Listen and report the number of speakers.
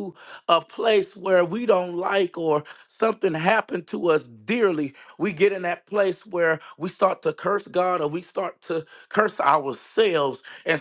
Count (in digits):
1